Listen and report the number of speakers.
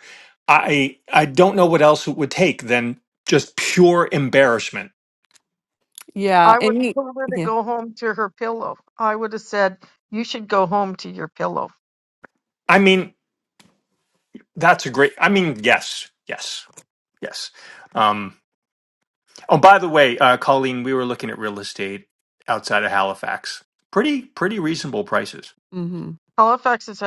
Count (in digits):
3